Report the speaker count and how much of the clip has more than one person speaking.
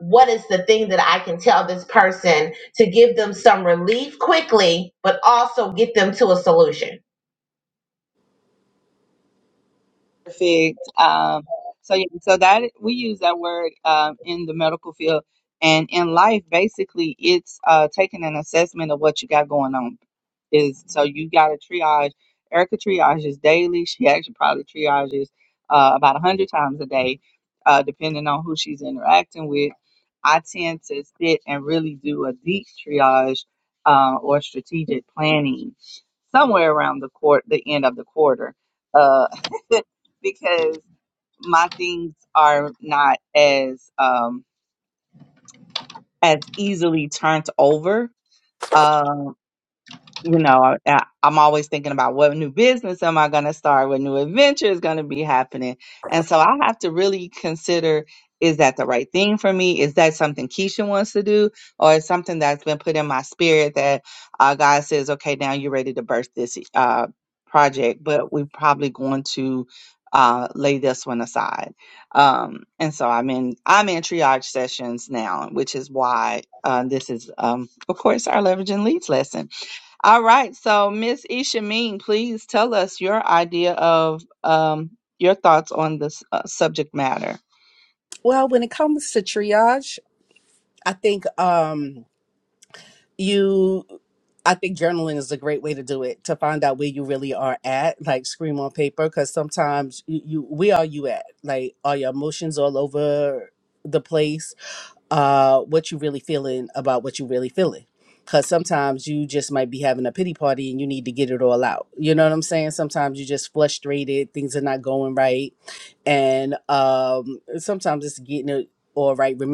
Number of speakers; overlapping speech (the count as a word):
three, no overlap